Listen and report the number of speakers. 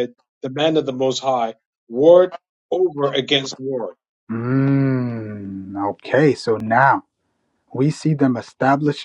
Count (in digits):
2